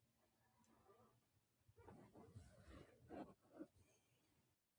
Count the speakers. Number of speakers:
zero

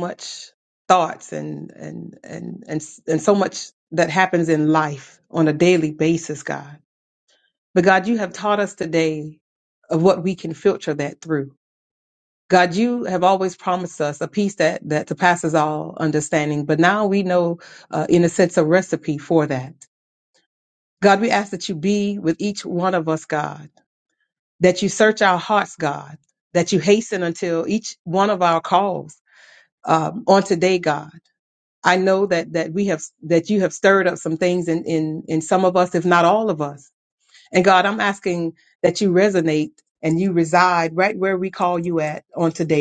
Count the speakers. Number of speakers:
one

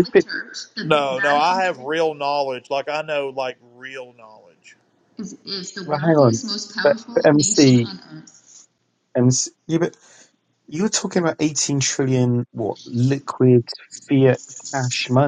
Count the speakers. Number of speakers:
three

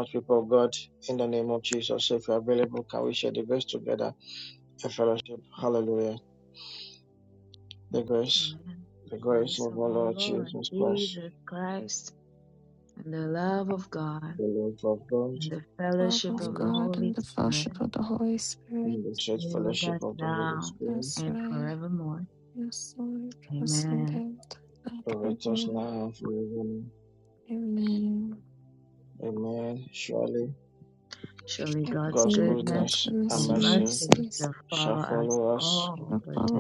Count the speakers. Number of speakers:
three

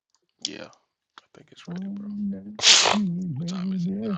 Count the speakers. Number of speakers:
two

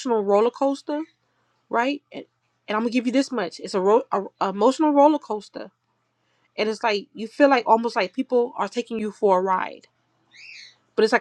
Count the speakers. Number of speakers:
one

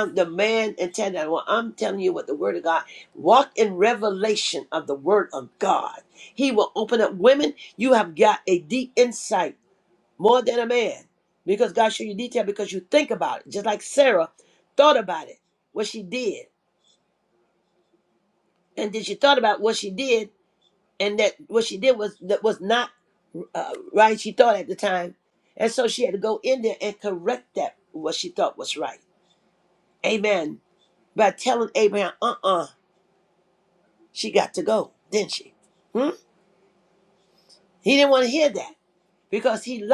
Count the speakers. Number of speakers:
one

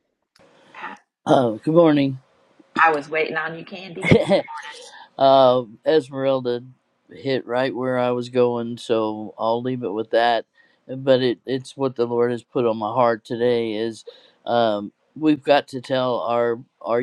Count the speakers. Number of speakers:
two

